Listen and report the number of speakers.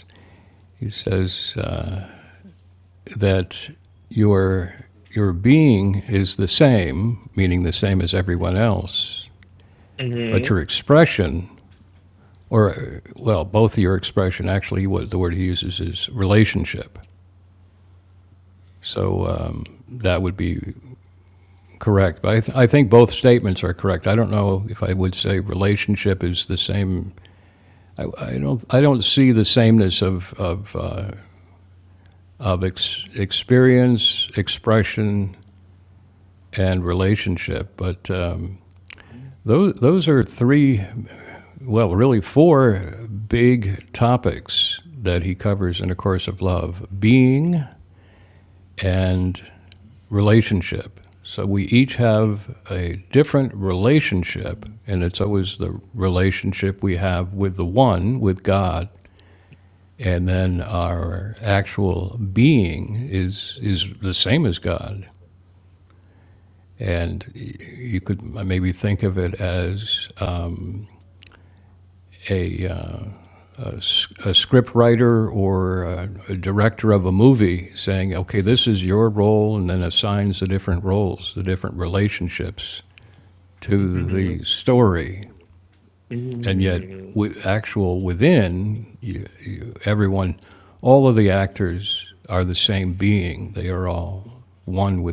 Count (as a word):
two